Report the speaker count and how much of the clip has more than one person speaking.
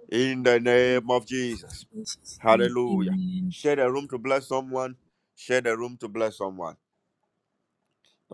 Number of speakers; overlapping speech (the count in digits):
1, no overlap